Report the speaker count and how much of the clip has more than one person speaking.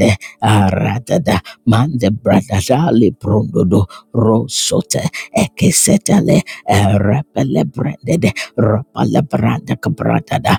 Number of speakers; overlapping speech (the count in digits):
1, no overlap